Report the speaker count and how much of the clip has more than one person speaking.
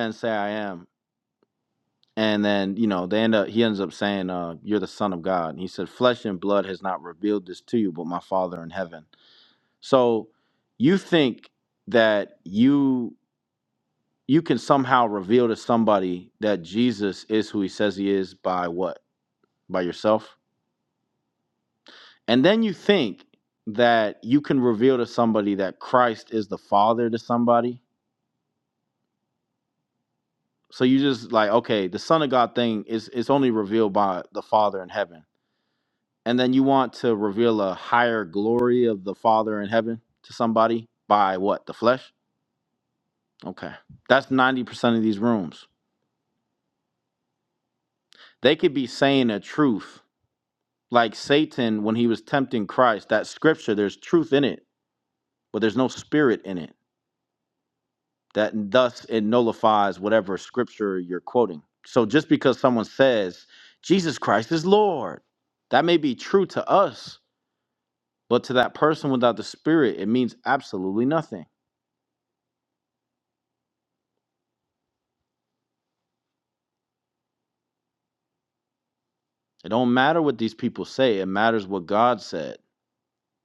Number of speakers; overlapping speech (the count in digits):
1, no overlap